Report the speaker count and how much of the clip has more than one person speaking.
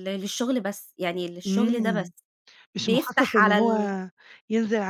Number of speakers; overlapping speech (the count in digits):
2, about 31%